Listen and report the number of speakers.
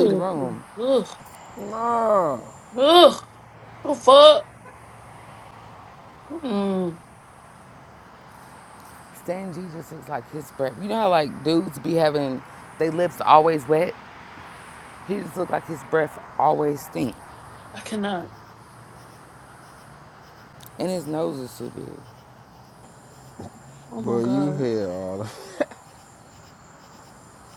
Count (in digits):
3